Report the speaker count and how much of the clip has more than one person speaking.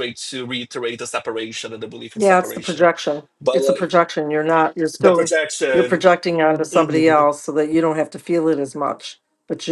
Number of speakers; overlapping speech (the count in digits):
2, about 23%